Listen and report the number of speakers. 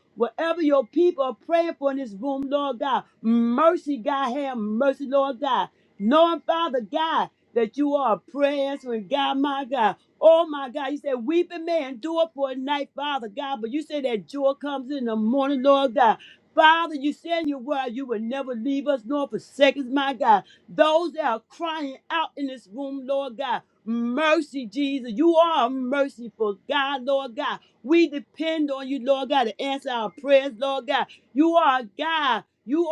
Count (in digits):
1